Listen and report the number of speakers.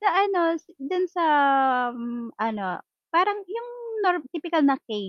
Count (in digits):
1